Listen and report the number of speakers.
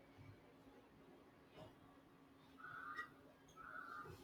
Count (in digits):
0